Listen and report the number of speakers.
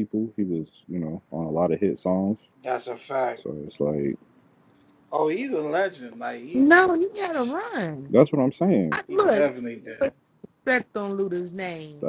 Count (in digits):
3